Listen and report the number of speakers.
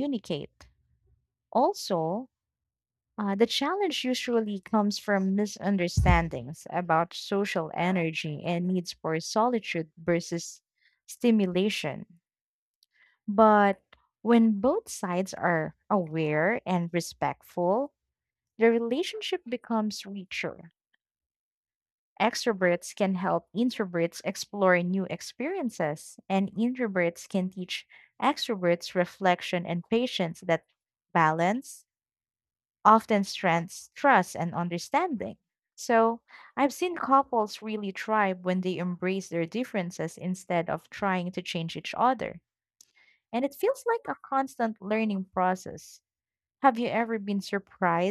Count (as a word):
one